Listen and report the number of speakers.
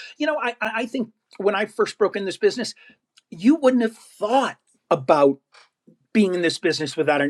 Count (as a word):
one